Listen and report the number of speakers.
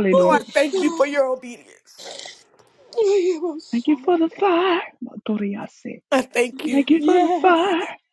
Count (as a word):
three